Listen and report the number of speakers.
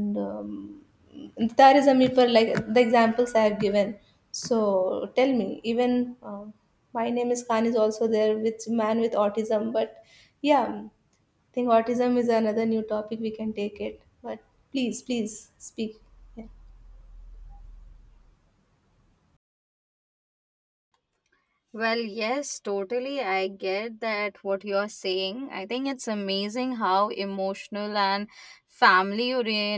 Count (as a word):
two